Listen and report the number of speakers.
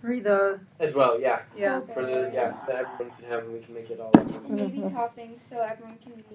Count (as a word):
three